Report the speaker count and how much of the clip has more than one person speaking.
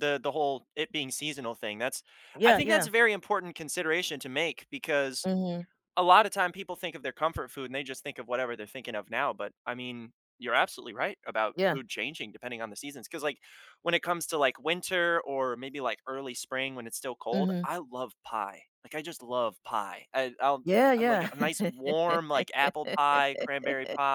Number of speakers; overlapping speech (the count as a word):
two, about 6%